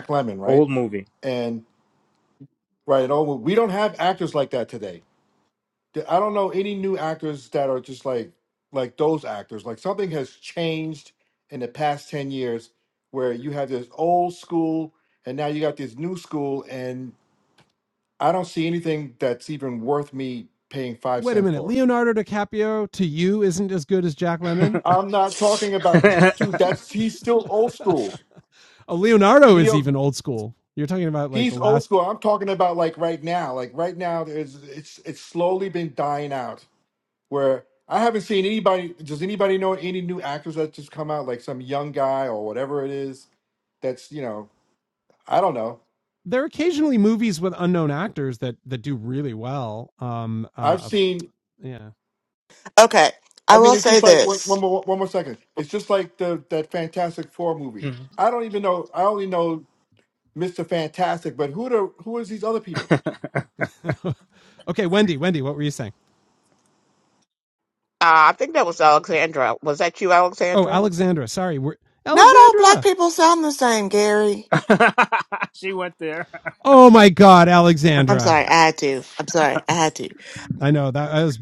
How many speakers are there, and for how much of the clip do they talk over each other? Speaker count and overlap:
five, about 5%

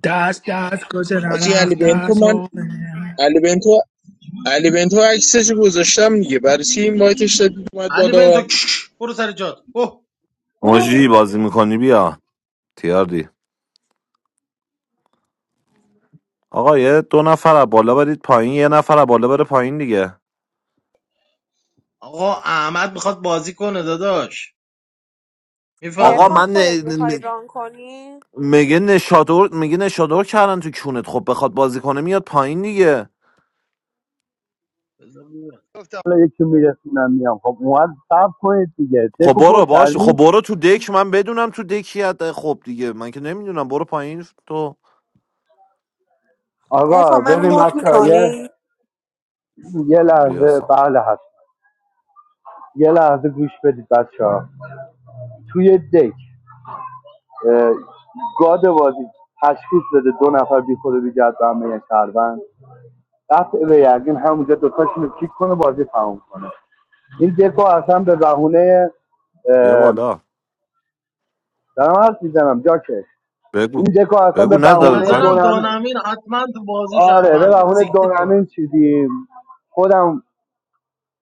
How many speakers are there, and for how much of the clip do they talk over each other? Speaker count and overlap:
six, about 12%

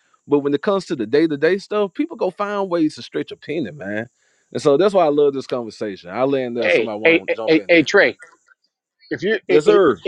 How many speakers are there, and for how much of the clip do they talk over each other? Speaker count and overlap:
two, about 16%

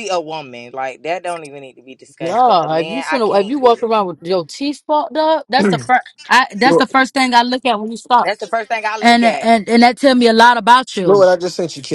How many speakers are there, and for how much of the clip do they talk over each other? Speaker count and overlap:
three, about 25%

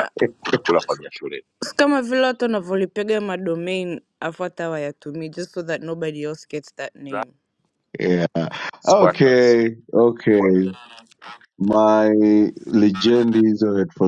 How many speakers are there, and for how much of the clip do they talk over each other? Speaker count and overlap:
three, about 5%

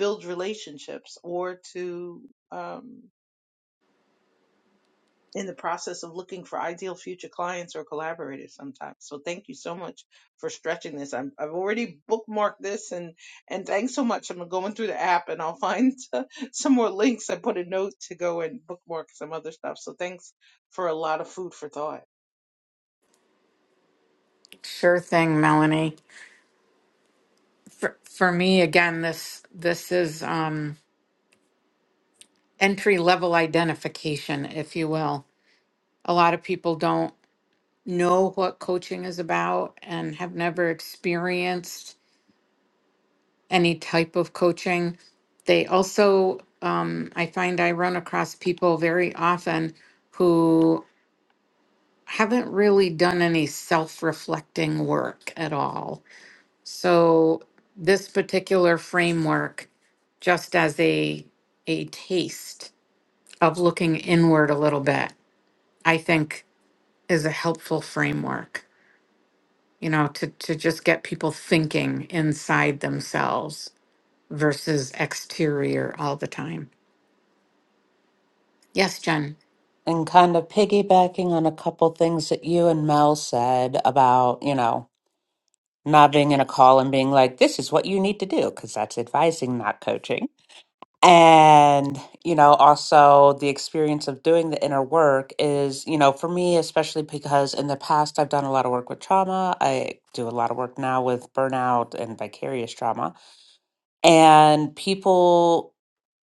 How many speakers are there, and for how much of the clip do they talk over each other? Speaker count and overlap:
three, no overlap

